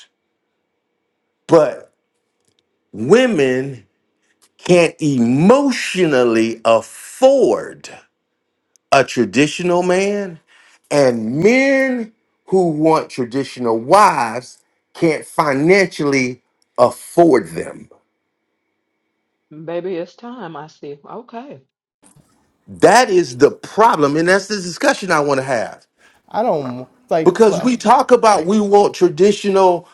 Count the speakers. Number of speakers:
three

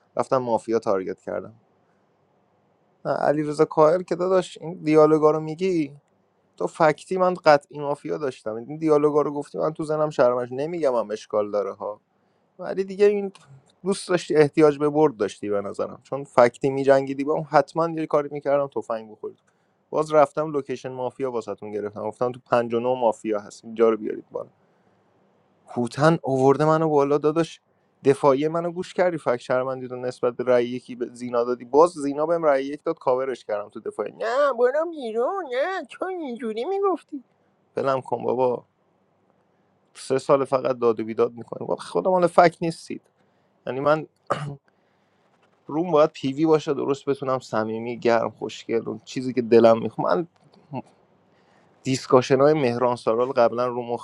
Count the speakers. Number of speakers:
one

